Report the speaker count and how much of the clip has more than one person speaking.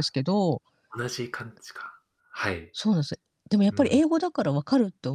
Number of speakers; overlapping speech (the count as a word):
two, about 5%